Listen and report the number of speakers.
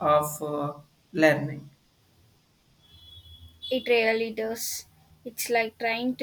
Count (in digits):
2